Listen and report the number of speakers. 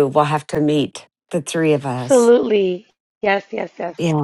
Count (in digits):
2